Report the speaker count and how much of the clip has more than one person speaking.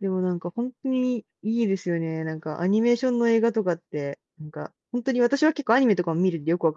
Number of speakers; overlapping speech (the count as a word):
one, no overlap